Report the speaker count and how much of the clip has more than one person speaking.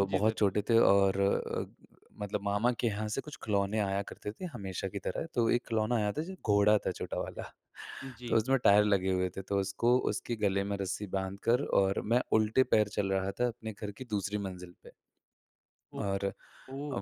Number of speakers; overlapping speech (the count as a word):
two, about 4%